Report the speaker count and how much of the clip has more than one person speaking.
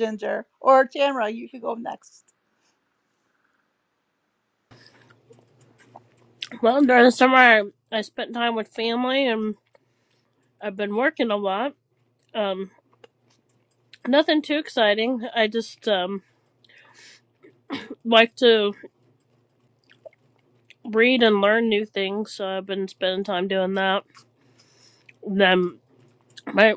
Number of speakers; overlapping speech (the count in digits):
2, no overlap